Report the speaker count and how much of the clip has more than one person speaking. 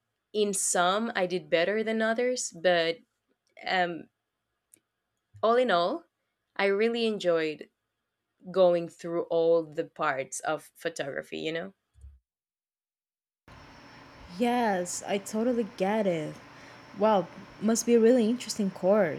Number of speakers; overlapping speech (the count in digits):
2, no overlap